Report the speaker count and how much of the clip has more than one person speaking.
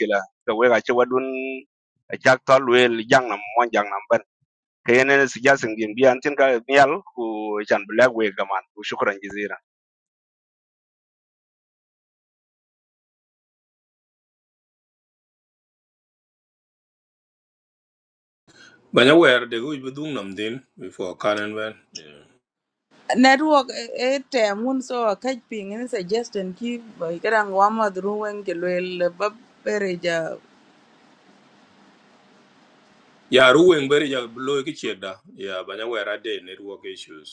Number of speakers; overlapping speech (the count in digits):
3, no overlap